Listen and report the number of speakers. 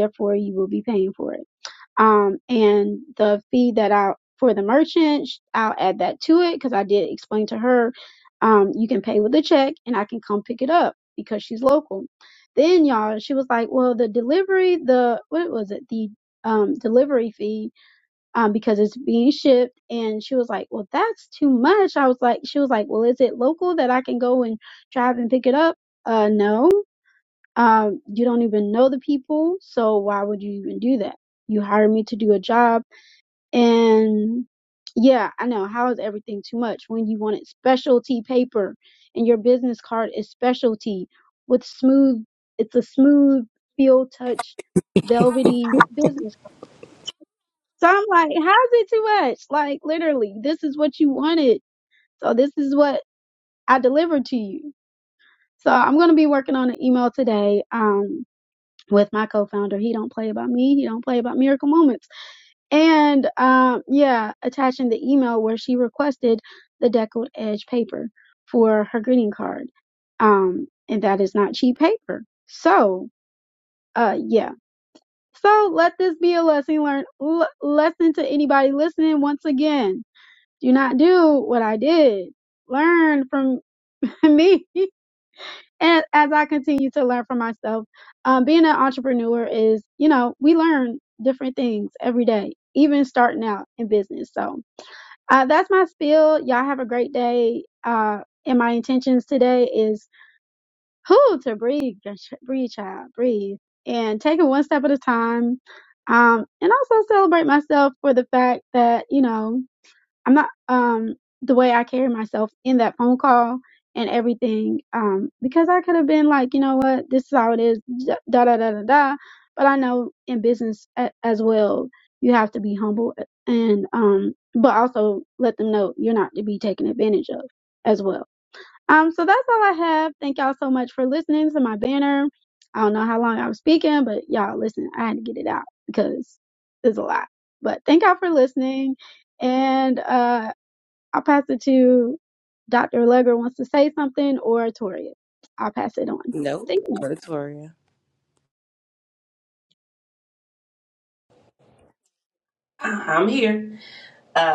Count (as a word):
three